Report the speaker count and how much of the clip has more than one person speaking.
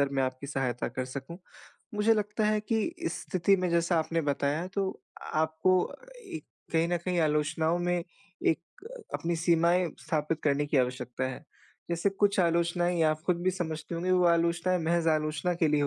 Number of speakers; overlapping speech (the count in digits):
1, no overlap